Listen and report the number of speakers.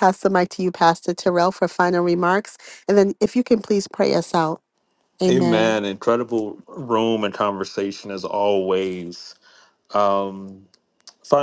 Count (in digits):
2